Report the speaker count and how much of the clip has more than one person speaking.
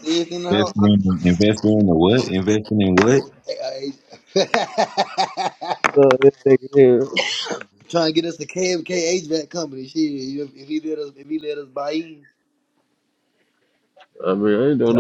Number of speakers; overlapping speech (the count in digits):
3, about 3%